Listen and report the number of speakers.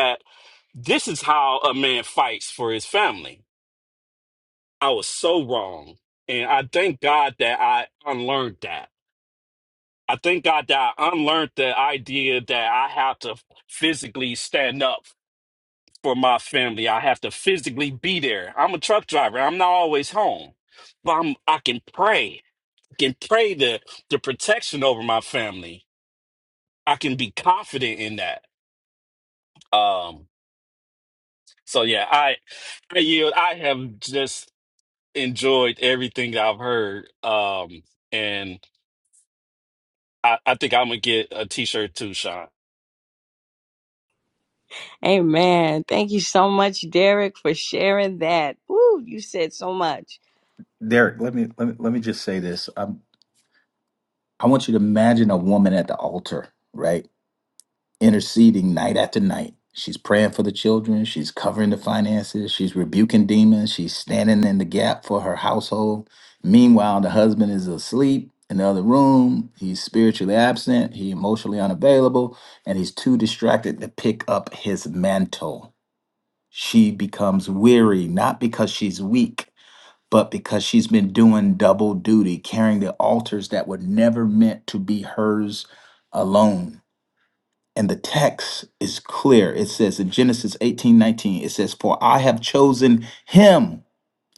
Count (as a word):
three